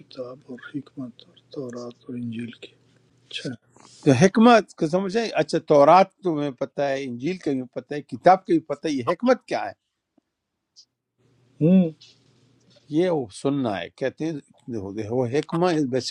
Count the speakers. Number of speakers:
2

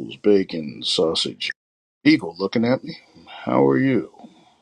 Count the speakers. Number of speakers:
1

